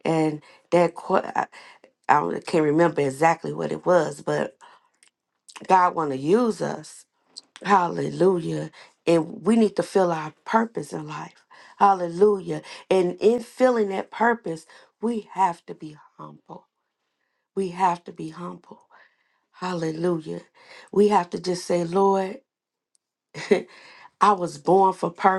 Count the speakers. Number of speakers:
1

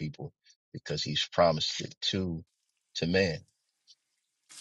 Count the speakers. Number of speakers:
1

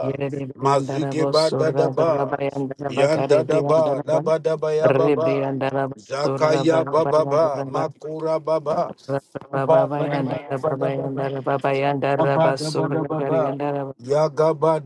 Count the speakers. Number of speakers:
2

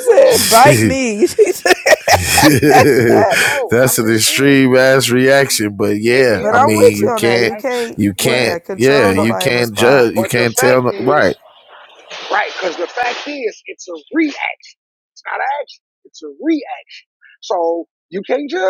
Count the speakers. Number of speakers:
3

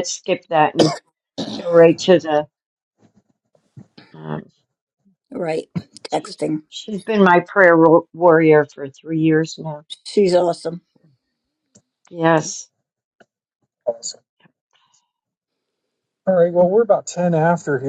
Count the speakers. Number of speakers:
3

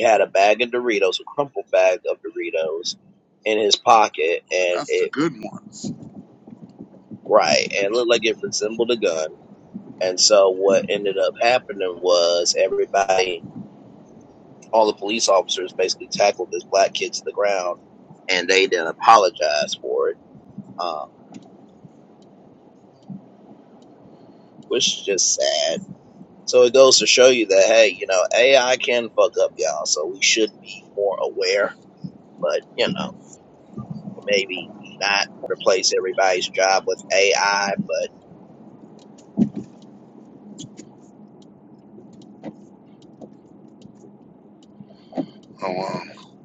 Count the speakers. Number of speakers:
2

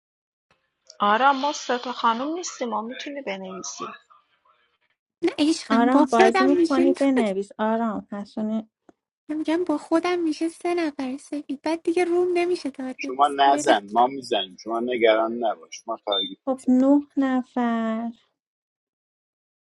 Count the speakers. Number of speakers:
4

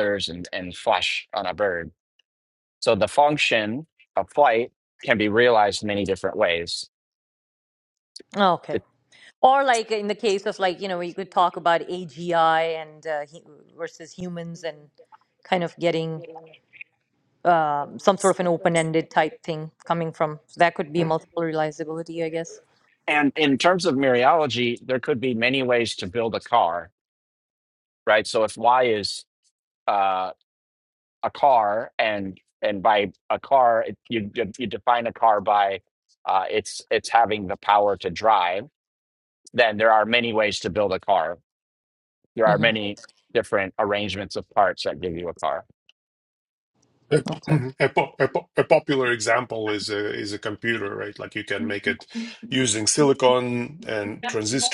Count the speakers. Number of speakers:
3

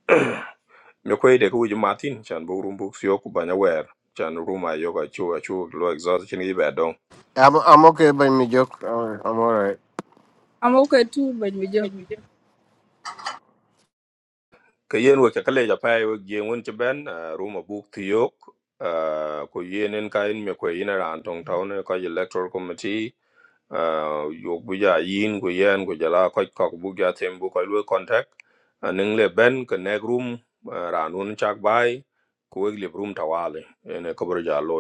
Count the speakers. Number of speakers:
3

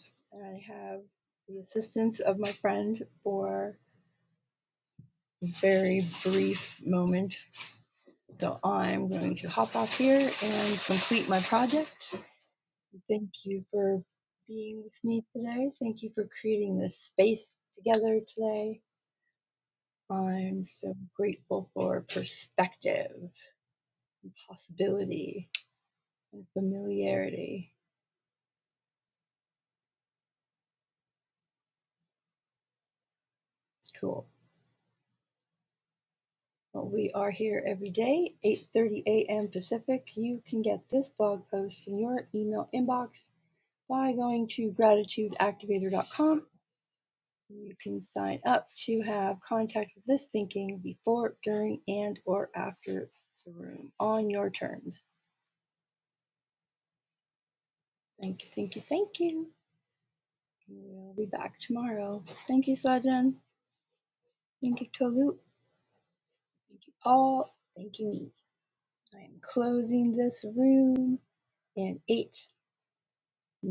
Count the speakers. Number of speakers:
1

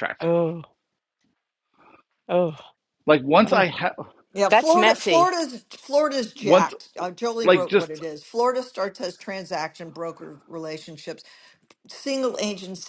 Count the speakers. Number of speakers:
3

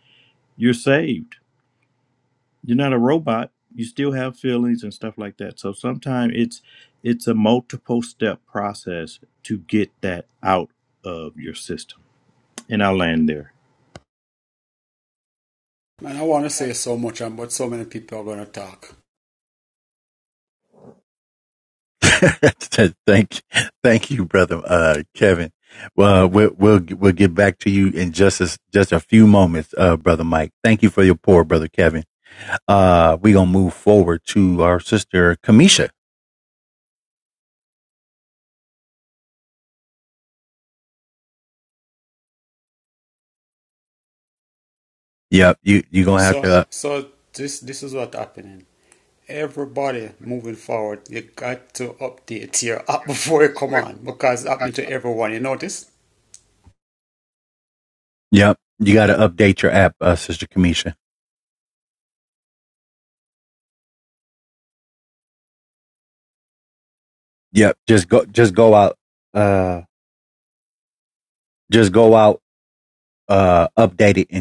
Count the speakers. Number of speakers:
3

